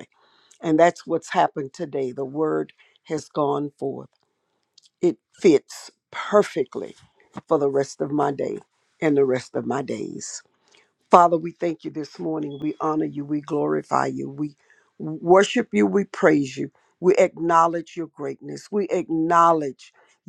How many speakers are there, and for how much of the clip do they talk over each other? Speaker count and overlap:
1, no overlap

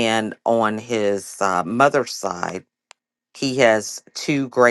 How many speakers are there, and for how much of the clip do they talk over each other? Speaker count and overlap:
1, no overlap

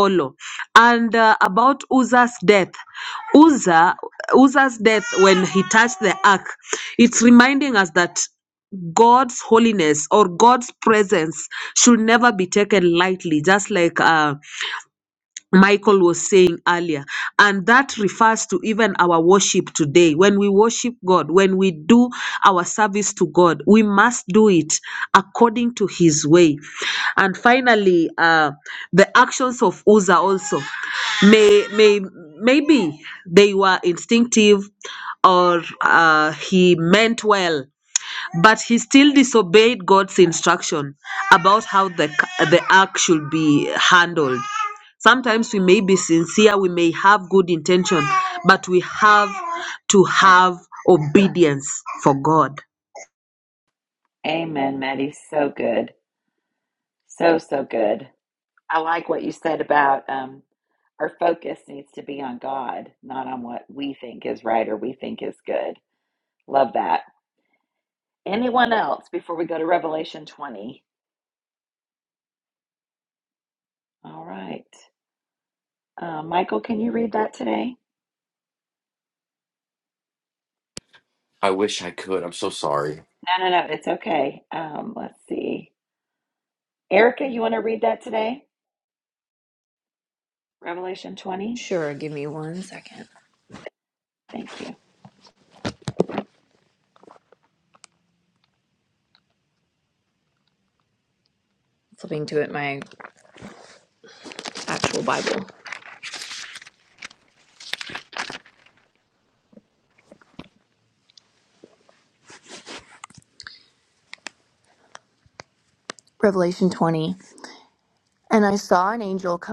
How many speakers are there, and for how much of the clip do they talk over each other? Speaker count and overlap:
4, under 1%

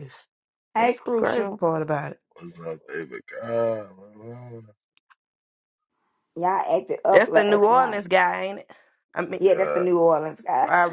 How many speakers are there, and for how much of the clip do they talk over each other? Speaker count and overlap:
3, about 20%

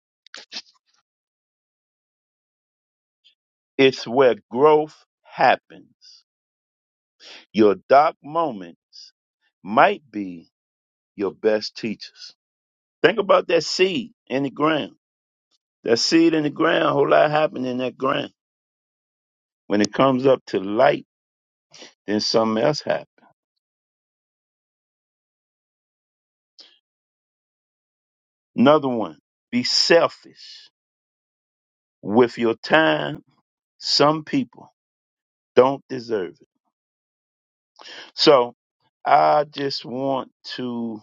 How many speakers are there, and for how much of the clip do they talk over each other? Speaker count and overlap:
1, no overlap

